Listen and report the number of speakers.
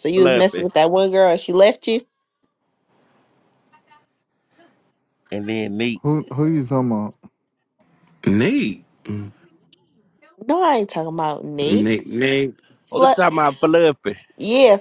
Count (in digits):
4